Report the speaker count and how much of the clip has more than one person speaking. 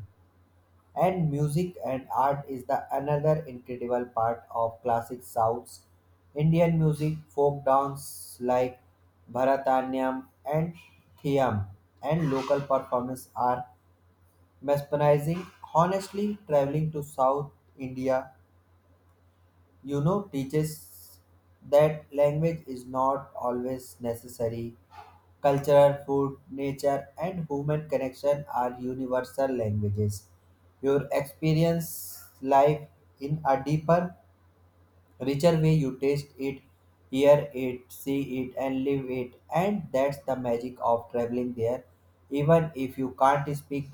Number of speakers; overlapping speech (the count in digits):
1, no overlap